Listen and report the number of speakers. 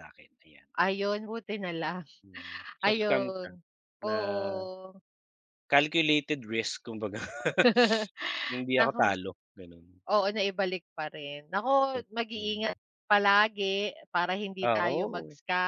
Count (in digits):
2